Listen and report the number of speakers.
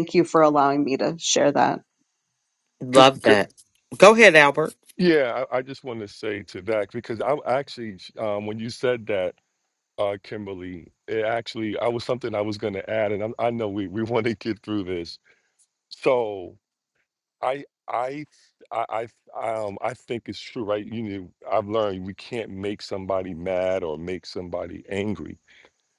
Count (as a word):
three